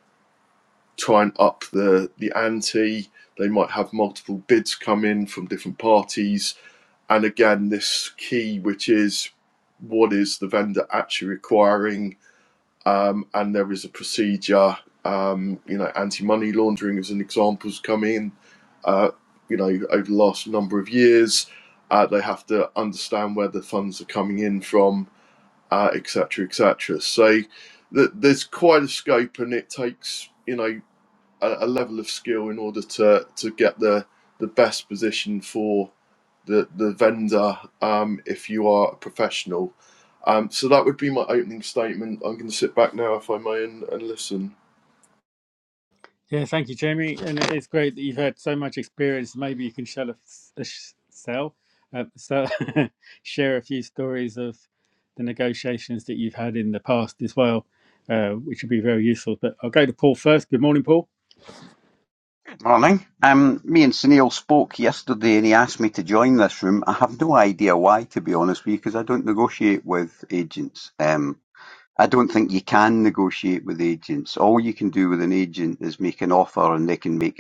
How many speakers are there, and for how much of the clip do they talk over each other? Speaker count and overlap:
three, no overlap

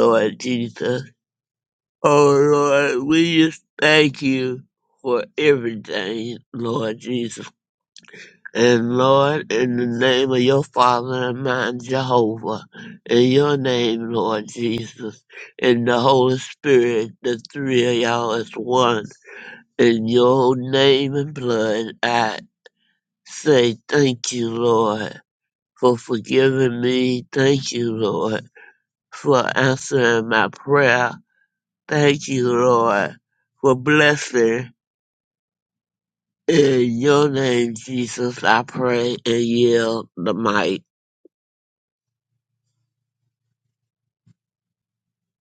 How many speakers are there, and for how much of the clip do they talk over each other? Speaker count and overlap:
one, no overlap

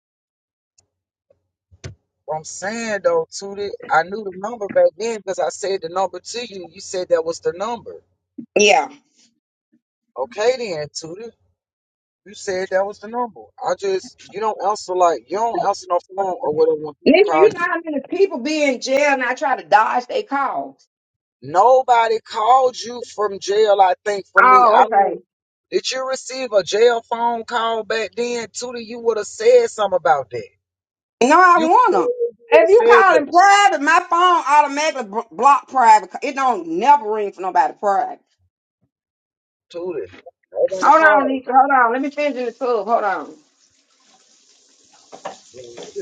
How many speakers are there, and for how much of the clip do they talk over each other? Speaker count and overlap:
two, about 7%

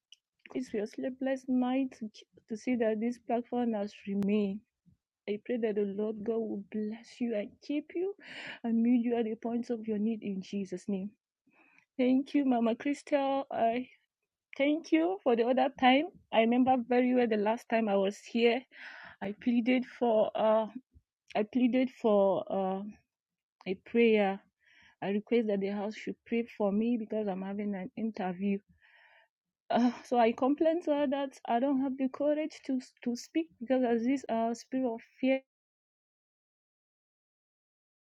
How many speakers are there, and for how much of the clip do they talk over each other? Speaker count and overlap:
one, no overlap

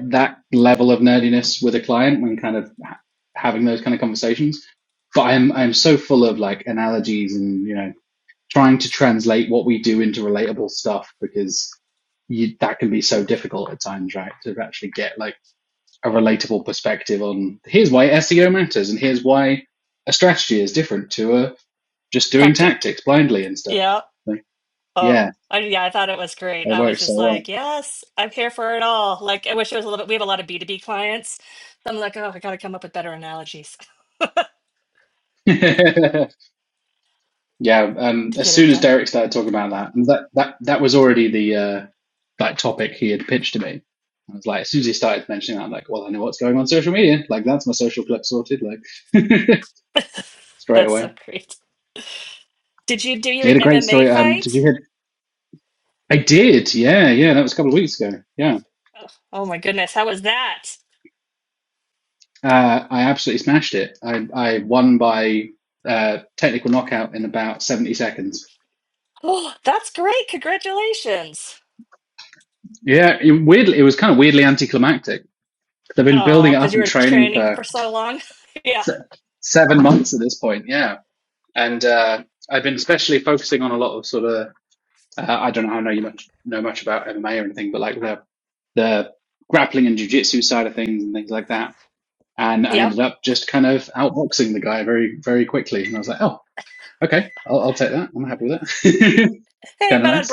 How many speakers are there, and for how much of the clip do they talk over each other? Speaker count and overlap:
two, about 6%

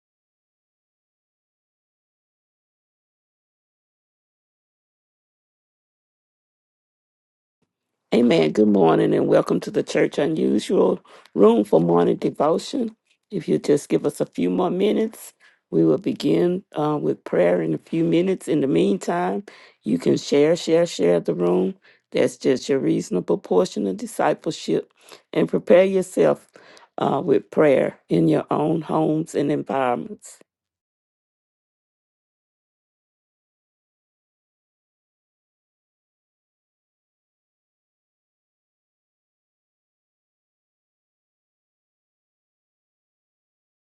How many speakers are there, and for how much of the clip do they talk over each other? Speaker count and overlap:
one, no overlap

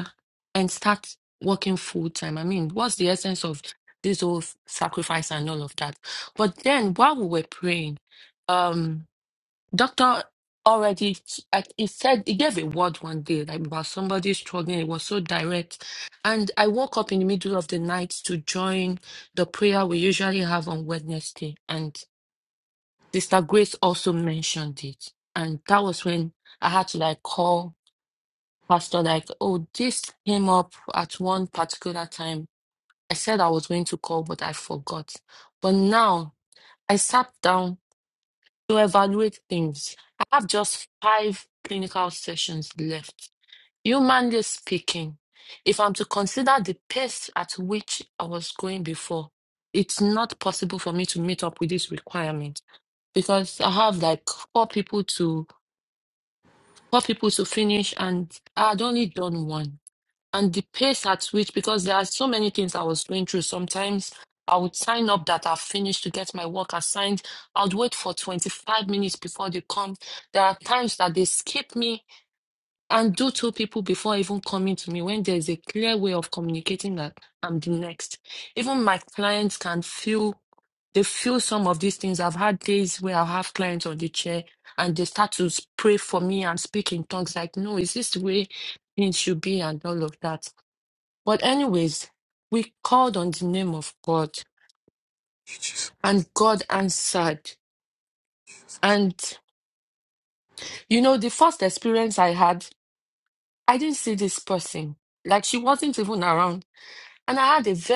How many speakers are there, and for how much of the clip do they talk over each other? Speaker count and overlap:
one, no overlap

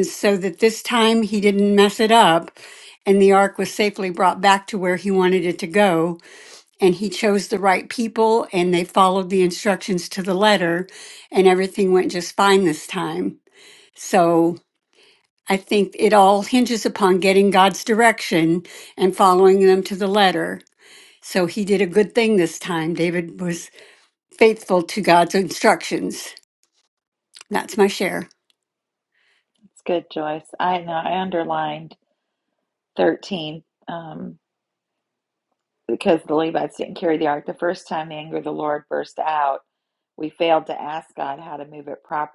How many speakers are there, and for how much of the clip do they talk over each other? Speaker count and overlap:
two, no overlap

